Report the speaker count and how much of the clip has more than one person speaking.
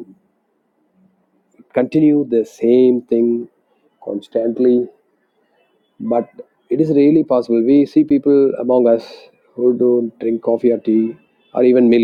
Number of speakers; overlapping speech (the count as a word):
one, no overlap